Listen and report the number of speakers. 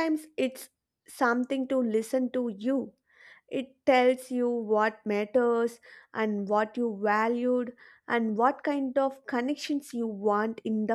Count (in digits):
1